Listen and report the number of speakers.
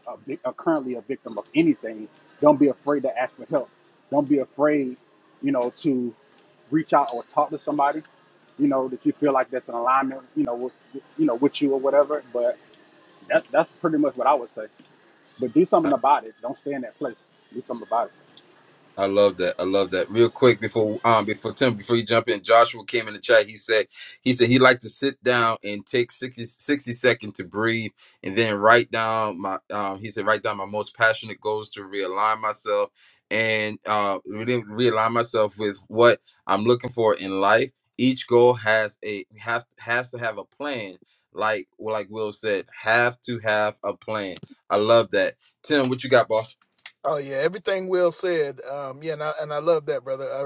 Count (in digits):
3